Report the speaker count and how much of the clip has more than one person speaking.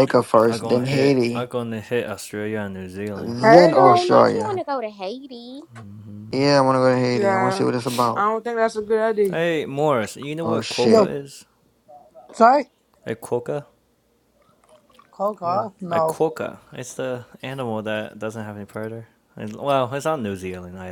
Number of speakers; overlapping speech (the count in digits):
5, about 20%